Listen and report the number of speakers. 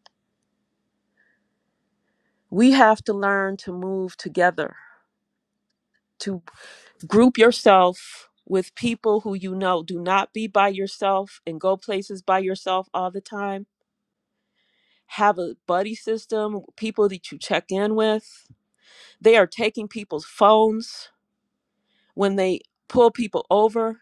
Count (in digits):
1